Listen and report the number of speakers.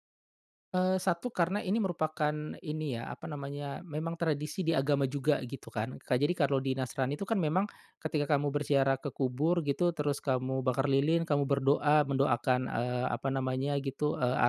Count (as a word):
one